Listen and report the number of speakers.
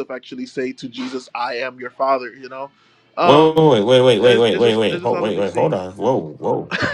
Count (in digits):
2